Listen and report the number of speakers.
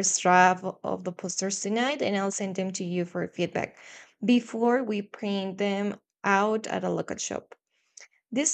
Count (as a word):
one